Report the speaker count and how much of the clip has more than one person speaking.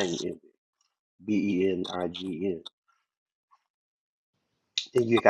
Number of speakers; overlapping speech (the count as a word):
one, no overlap